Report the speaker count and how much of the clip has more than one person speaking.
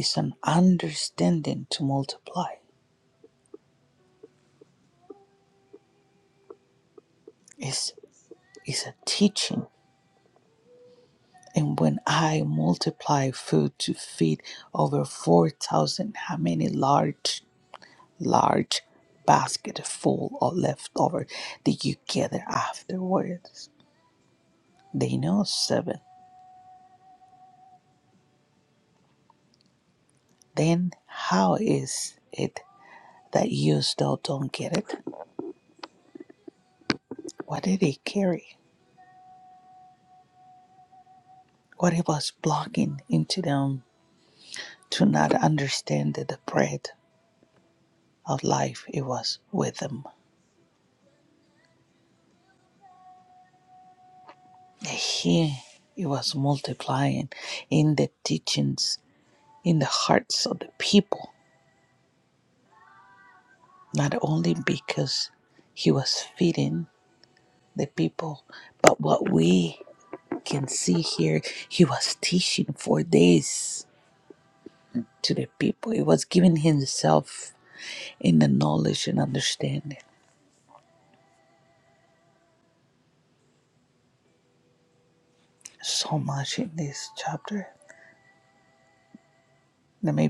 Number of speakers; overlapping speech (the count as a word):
one, no overlap